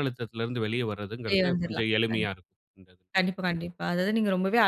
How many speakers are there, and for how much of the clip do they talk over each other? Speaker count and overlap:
two, about 21%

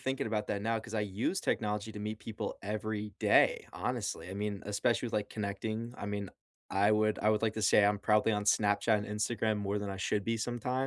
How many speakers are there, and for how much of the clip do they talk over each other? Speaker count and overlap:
one, no overlap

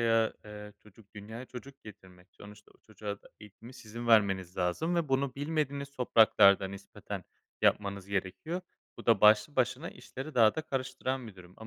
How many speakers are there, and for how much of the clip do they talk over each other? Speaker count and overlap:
one, no overlap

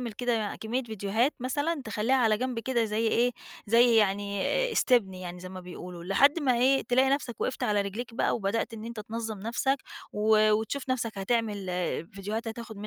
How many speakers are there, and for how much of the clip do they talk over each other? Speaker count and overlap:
one, no overlap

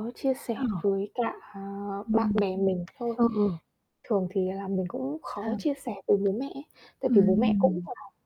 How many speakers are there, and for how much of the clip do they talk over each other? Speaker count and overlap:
two, about 16%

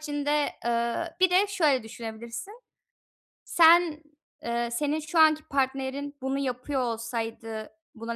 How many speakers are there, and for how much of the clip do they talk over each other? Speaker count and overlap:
one, no overlap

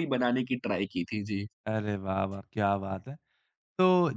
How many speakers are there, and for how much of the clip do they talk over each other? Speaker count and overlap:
two, no overlap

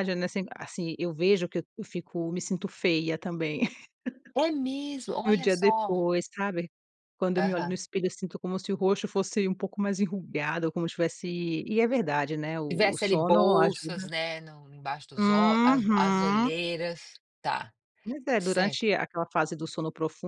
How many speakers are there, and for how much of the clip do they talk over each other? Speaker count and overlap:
two, about 19%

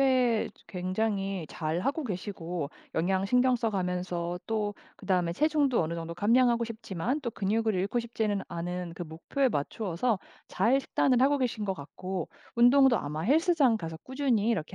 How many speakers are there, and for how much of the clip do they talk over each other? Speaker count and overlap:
one, no overlap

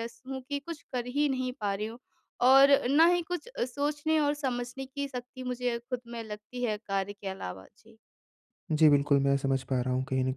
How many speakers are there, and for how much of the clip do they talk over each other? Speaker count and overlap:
two, no overlap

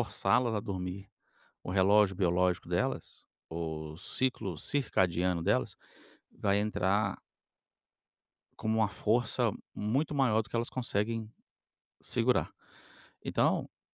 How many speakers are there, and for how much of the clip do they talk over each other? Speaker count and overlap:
one, no overlap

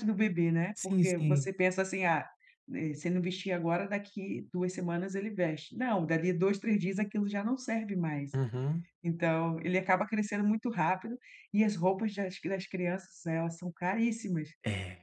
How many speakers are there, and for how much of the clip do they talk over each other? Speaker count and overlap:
two, about 4%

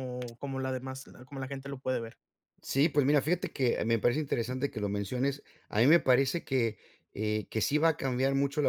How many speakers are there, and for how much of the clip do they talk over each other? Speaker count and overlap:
two, no overlap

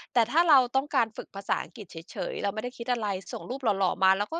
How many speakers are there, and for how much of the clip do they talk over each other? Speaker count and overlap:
one, no overlap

